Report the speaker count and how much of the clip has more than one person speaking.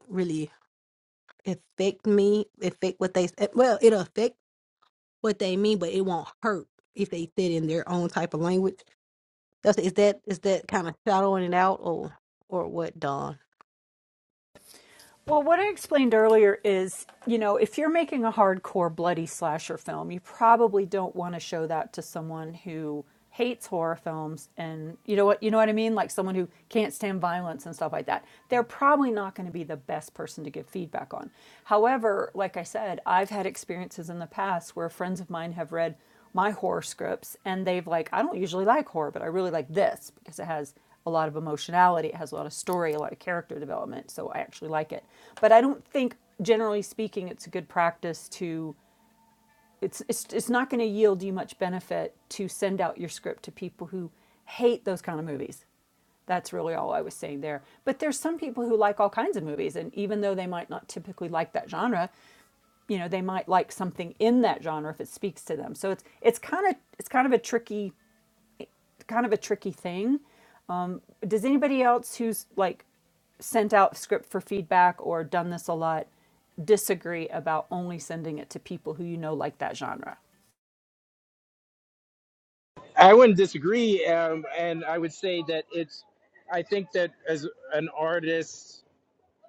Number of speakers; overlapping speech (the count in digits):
3, no overlap